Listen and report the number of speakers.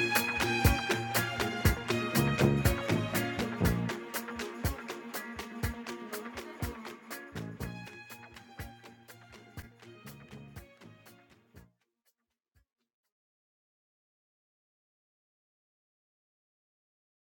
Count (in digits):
0